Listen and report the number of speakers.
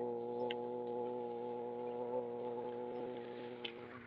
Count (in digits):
0